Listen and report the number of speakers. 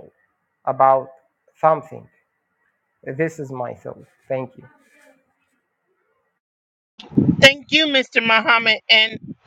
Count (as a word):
two